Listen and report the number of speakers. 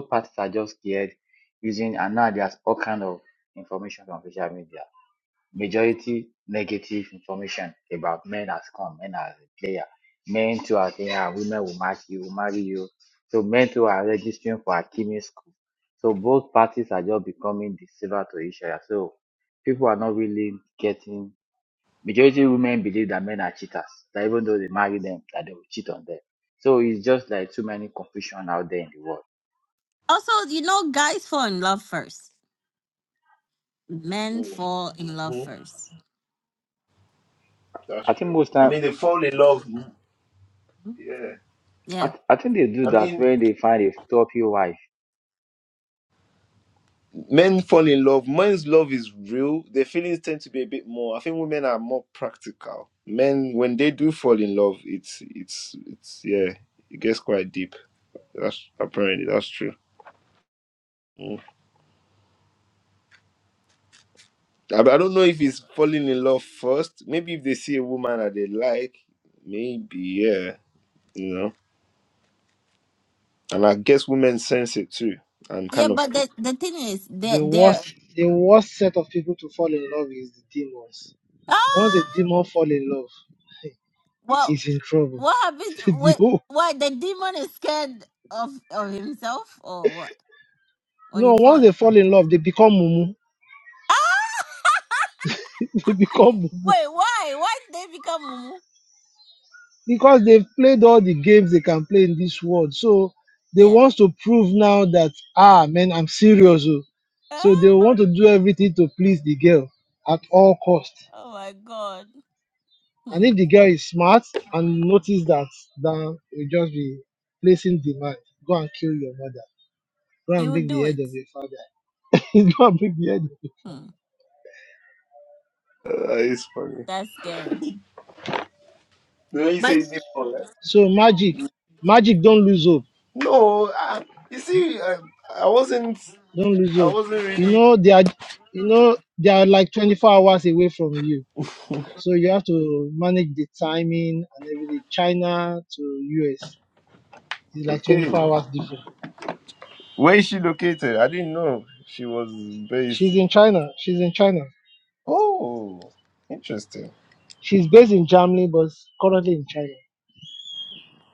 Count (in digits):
4